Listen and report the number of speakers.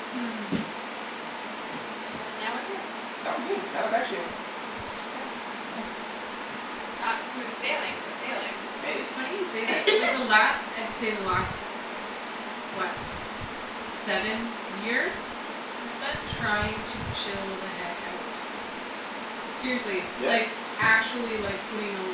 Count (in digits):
3